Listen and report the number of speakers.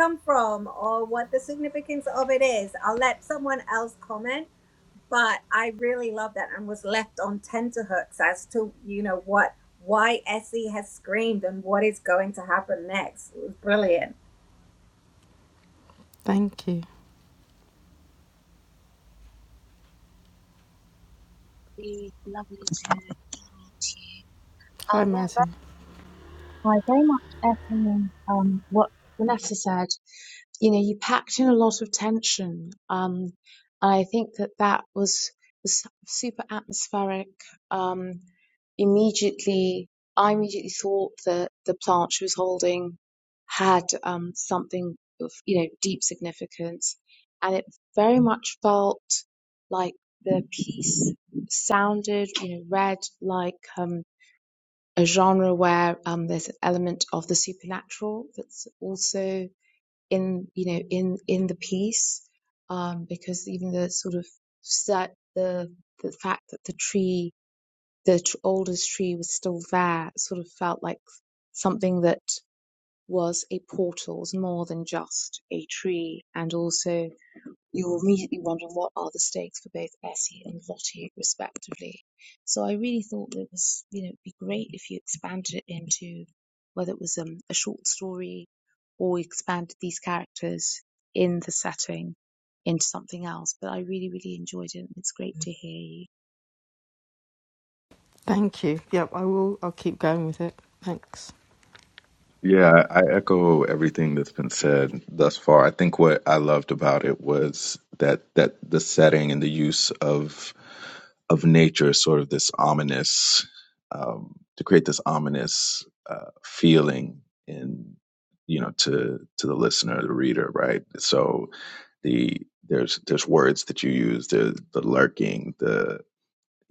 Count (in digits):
4